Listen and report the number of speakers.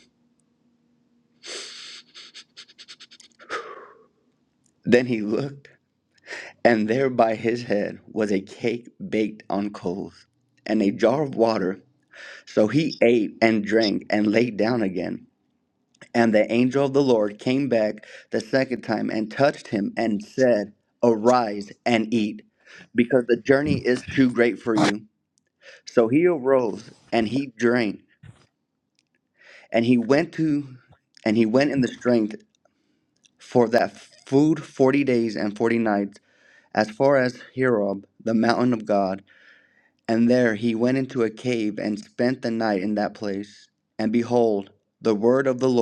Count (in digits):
1